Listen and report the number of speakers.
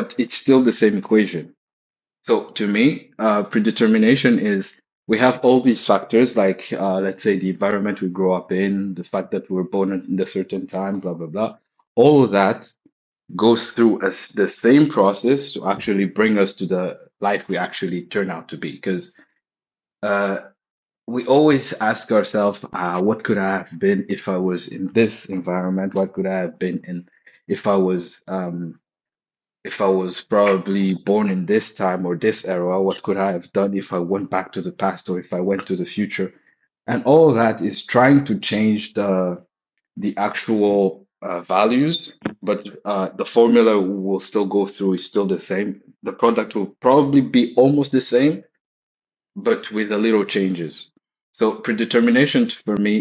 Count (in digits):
1